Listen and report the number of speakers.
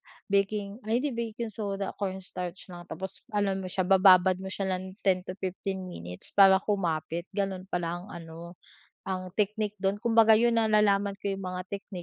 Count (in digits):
1